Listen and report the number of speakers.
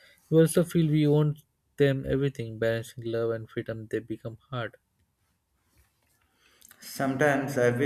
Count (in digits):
2